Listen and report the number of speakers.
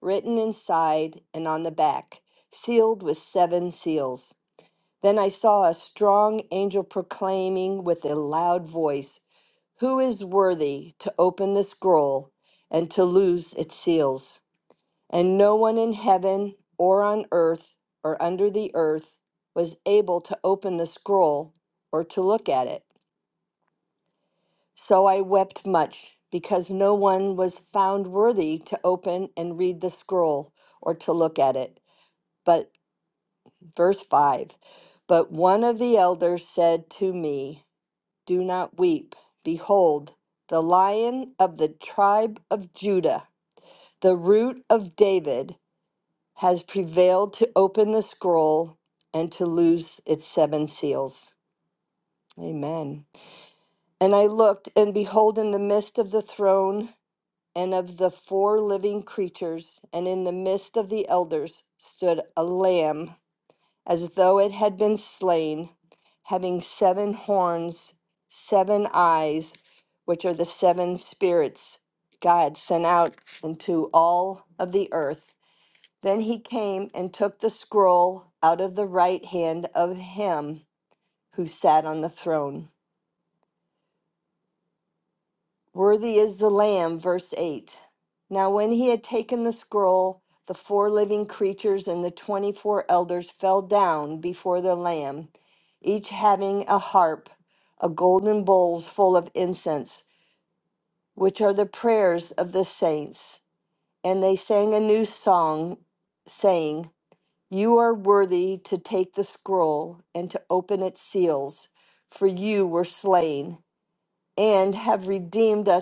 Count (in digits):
1